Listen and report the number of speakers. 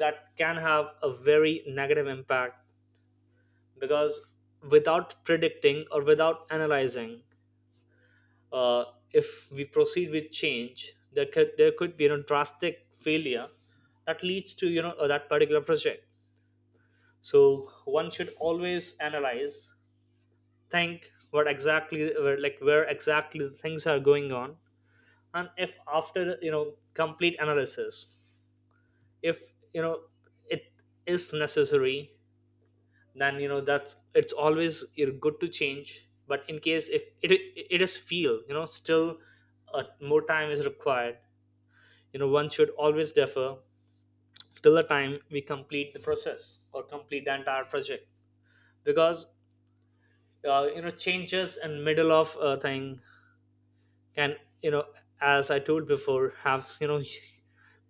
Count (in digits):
1